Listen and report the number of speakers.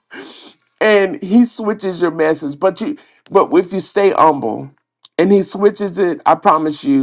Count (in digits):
1